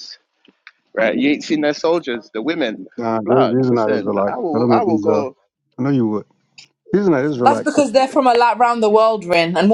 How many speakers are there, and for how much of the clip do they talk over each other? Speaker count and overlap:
three, about 25%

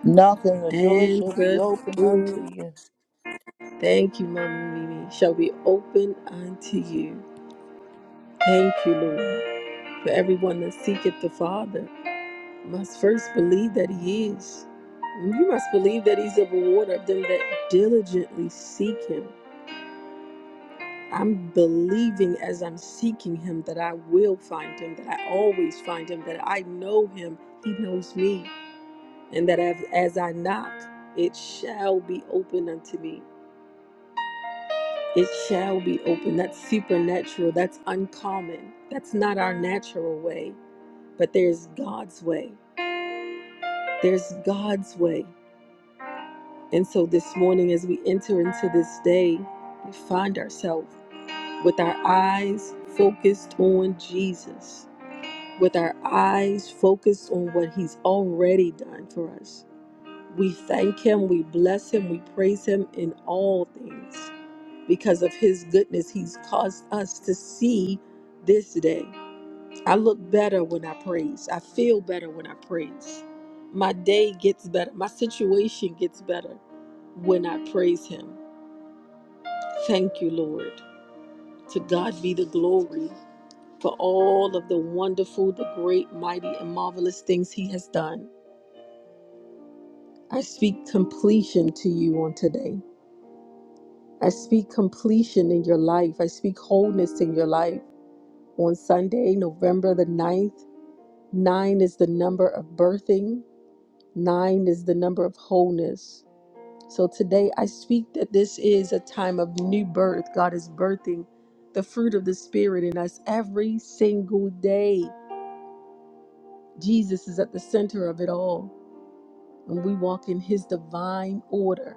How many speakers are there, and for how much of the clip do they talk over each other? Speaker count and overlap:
two, about 1%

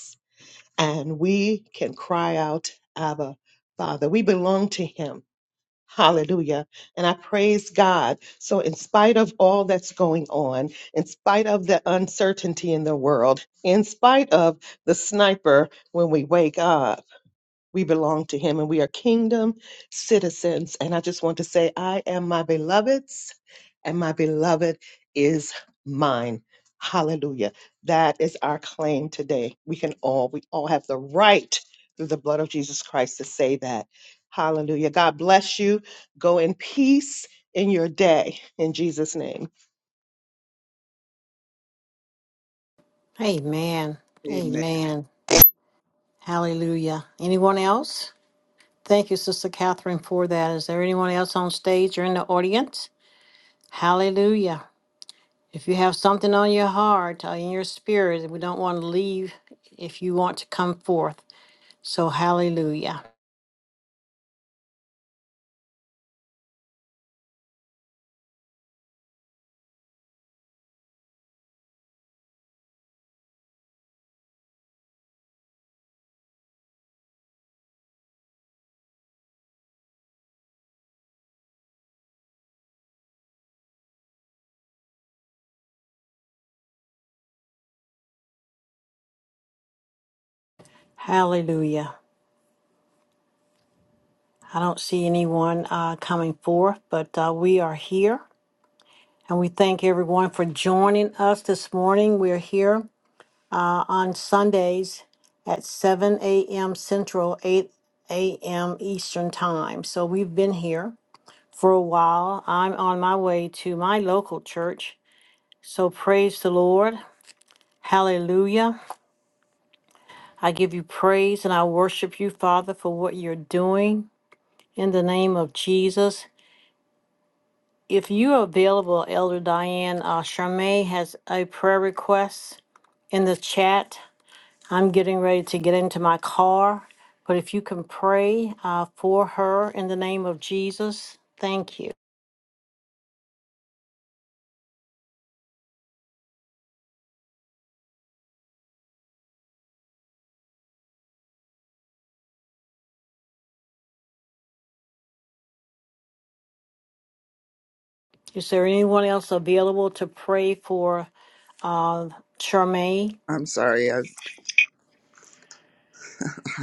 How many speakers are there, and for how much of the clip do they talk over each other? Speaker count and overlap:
three, under 1%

